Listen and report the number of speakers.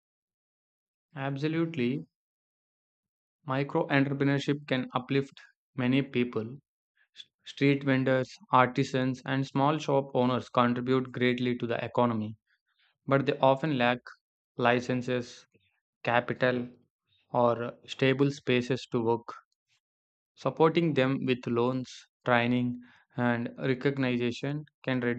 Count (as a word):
one